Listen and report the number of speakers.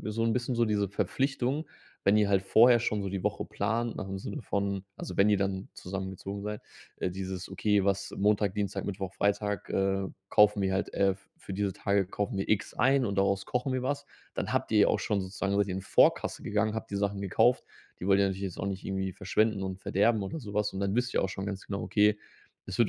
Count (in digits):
1